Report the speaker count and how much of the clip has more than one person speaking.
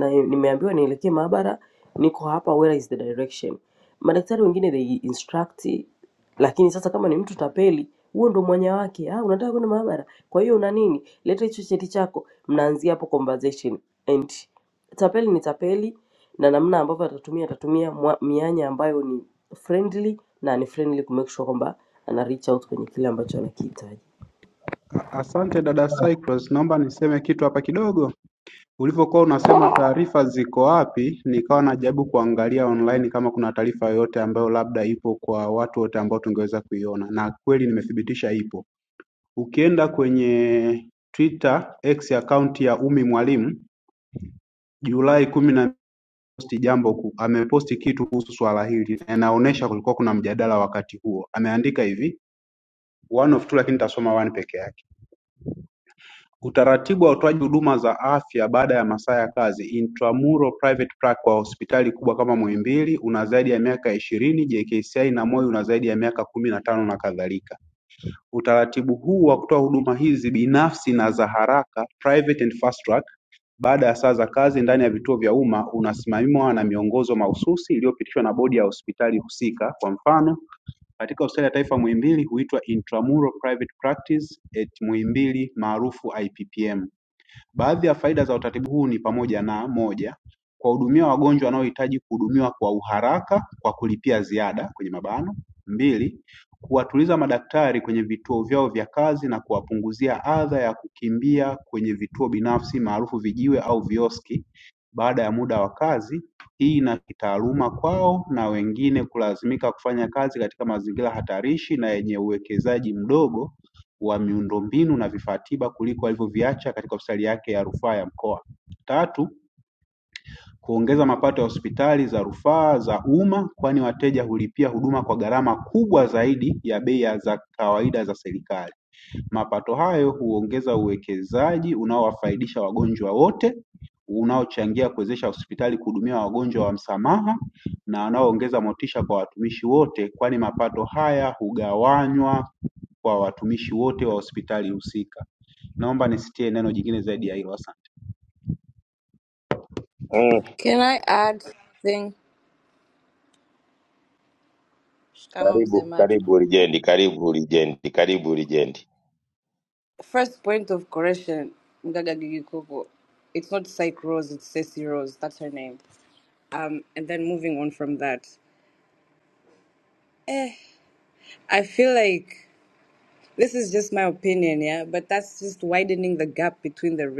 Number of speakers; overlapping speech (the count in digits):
4, under 1%